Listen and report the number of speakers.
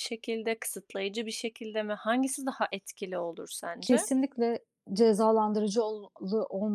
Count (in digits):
2